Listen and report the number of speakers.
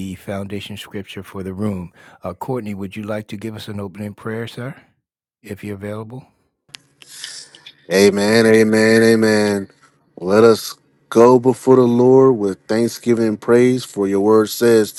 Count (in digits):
2